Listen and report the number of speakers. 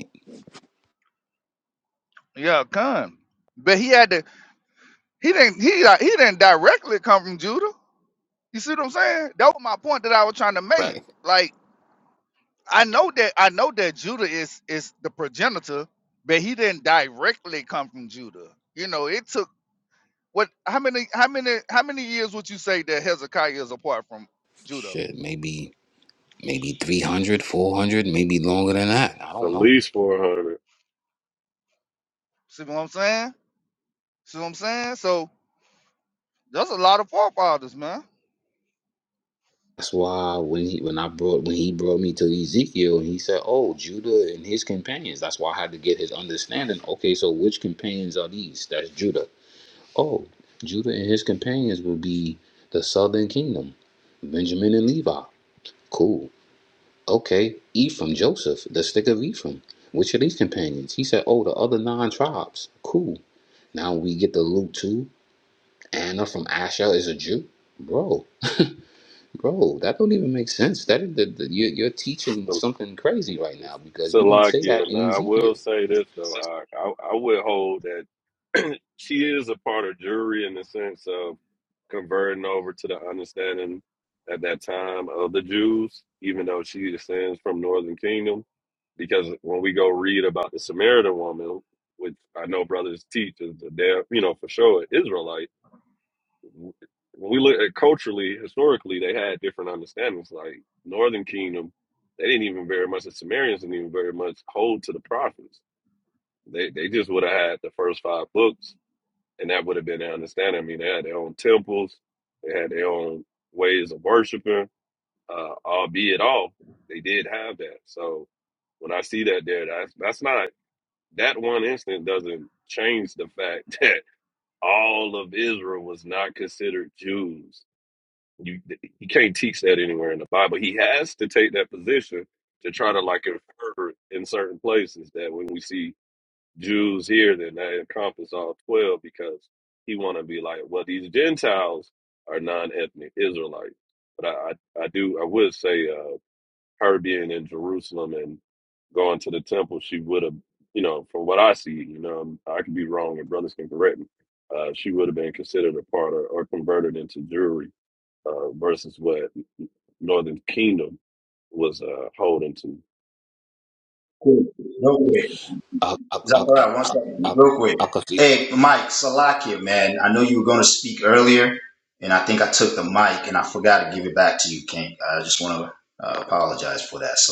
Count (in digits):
4